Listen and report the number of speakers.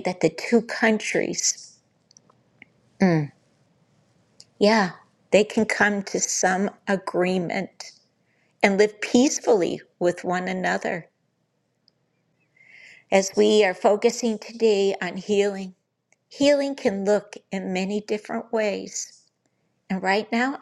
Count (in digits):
1